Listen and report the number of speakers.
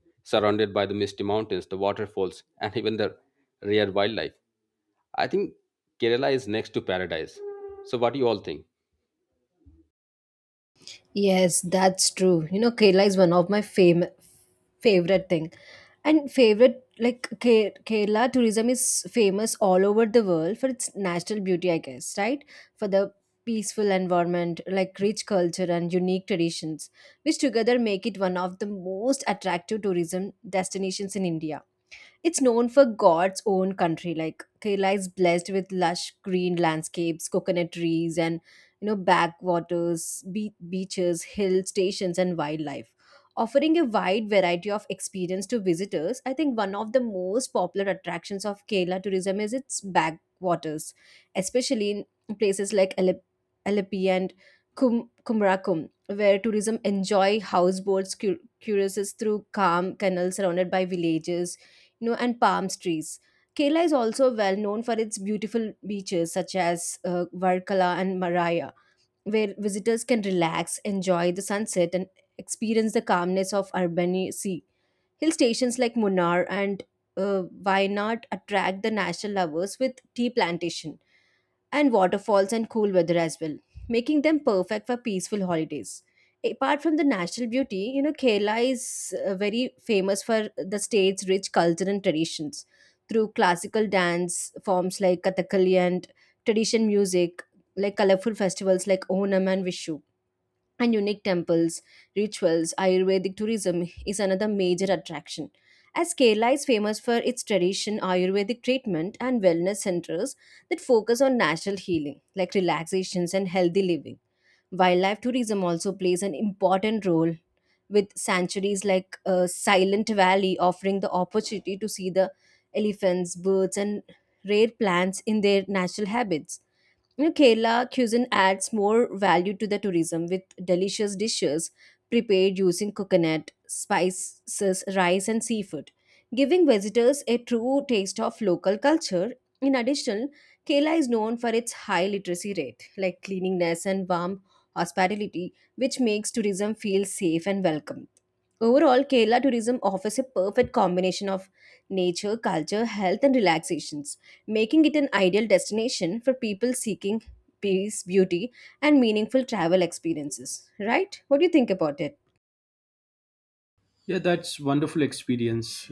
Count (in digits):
3